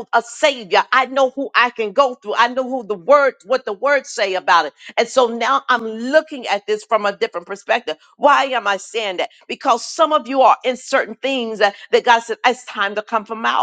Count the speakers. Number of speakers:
one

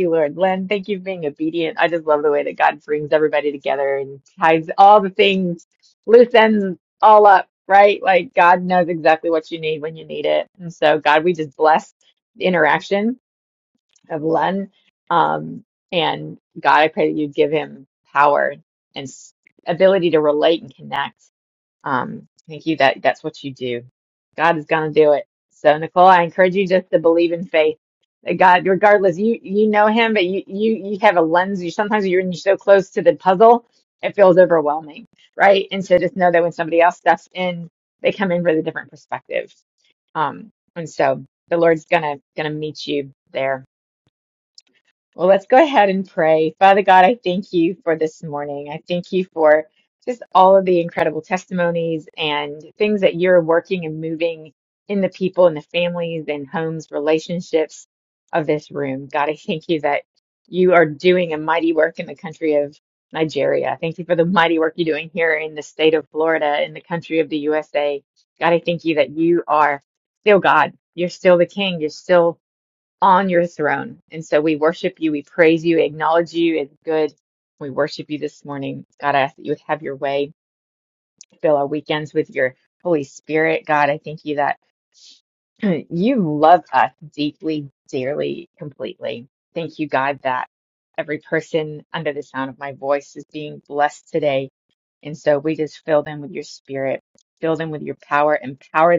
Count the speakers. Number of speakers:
one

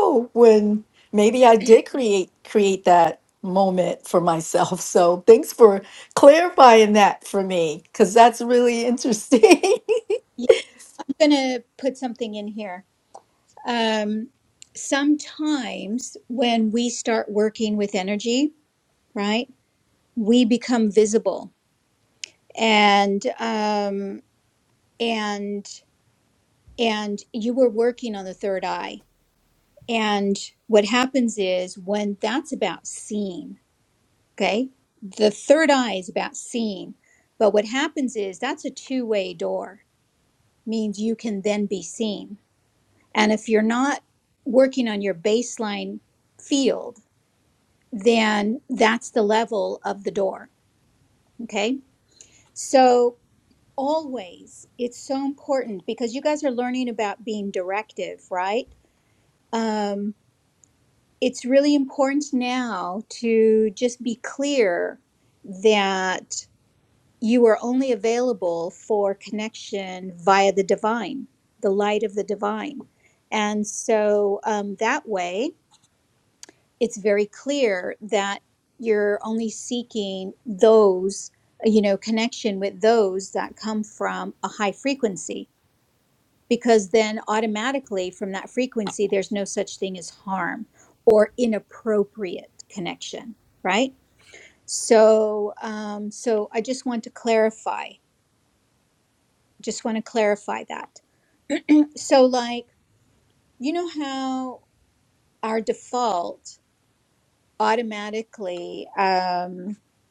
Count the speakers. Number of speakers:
two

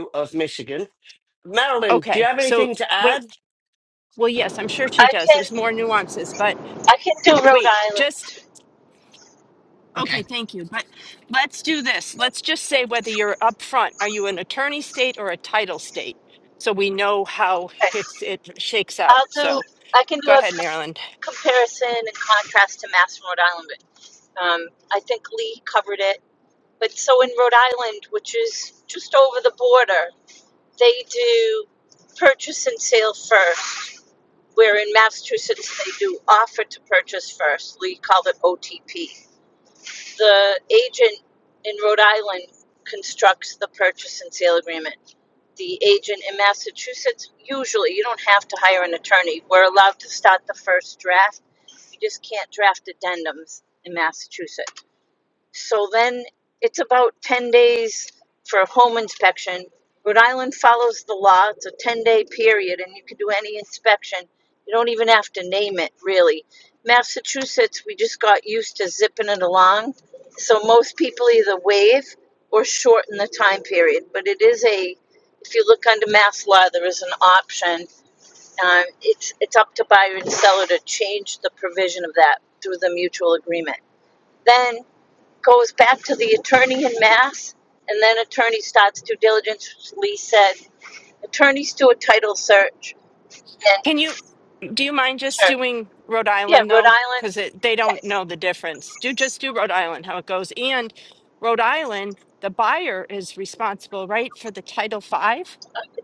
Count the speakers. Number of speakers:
three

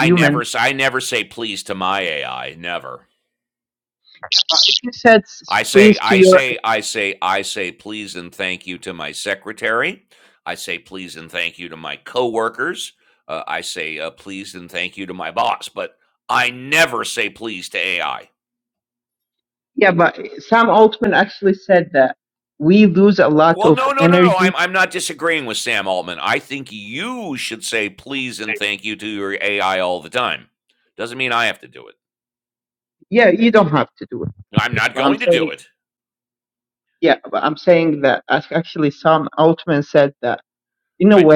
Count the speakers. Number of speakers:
two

